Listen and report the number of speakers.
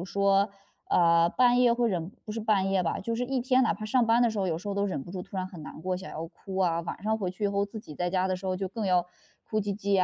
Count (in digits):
1